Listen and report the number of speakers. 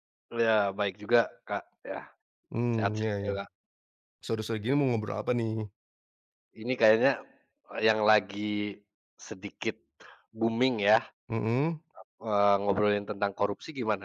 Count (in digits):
2